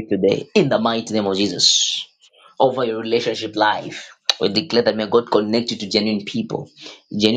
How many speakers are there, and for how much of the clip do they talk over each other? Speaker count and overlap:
1, no overlap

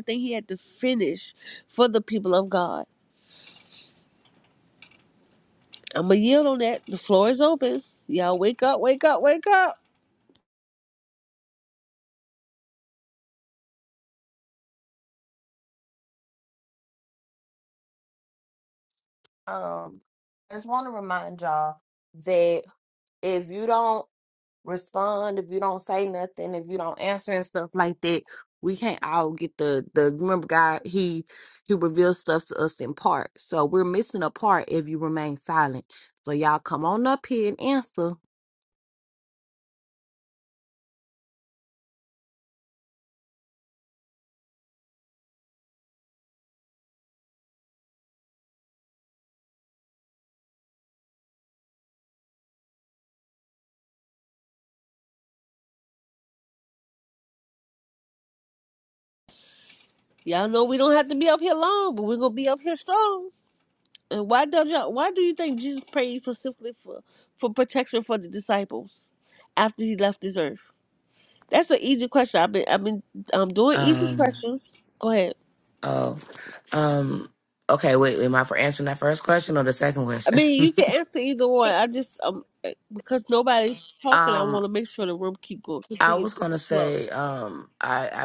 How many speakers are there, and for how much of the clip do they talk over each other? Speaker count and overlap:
3, about 2%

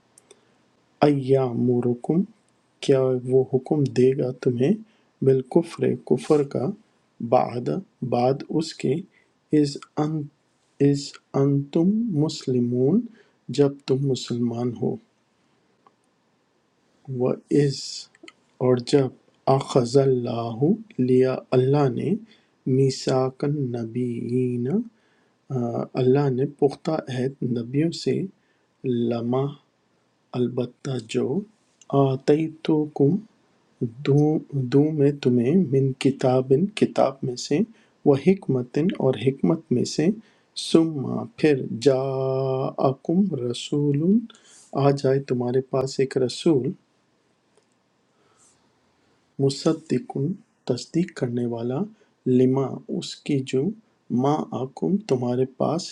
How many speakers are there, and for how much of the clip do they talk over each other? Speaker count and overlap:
1, no overlap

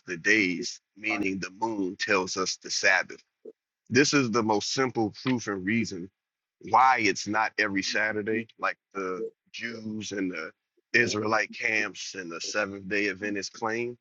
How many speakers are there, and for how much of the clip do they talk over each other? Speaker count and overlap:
1, no overlap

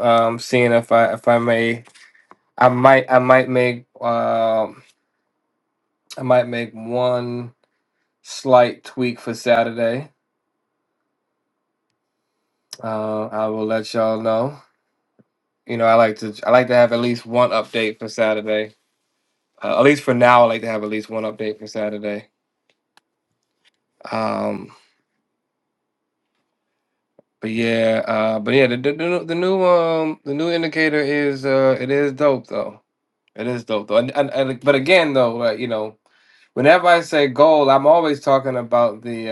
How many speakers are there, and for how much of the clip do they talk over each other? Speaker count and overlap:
1, no overlap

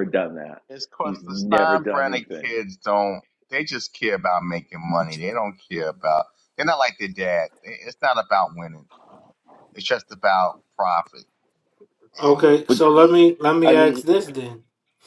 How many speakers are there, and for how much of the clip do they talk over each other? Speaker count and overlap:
3, about 13%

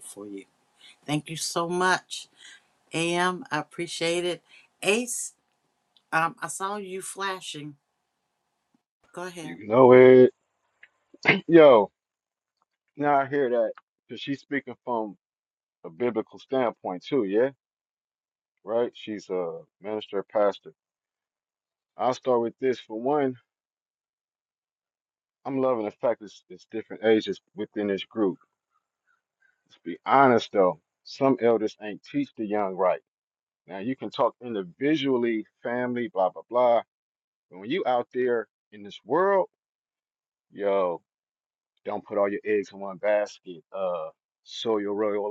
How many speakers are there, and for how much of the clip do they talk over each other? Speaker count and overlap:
2, under 1%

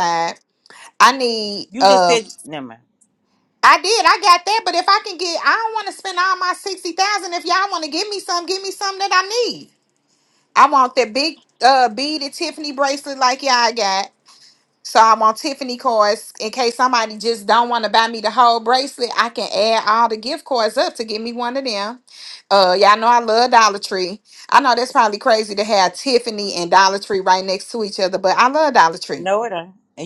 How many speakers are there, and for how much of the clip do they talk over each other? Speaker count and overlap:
2, about 2%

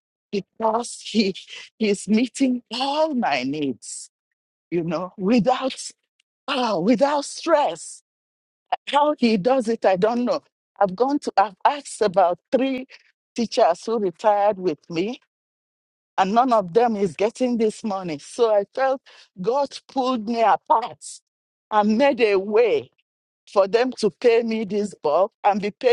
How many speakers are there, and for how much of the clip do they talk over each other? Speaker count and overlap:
1, no overlap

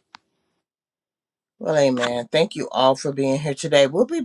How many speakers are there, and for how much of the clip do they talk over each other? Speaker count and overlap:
1, no overlap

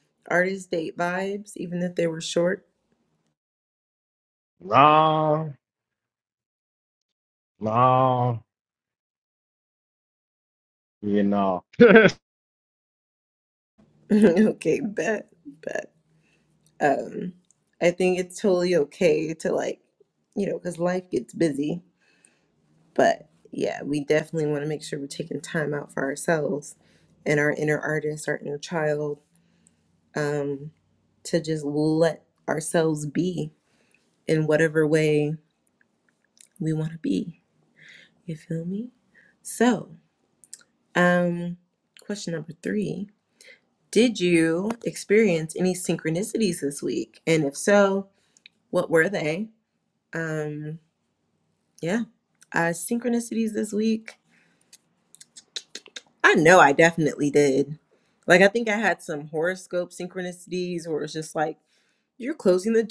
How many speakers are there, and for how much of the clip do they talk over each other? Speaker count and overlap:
2, no overlap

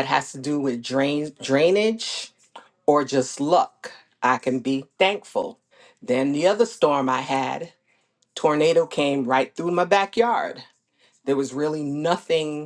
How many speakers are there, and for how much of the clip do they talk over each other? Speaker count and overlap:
1, no overlap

